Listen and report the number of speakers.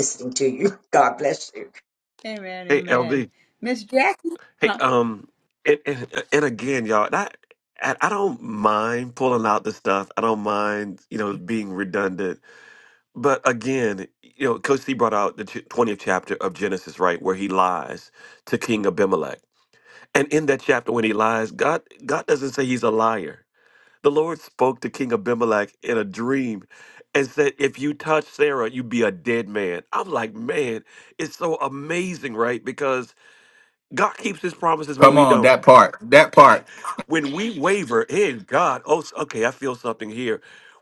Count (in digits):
4